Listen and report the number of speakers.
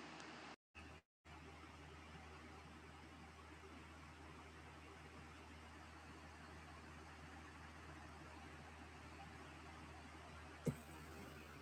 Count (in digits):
0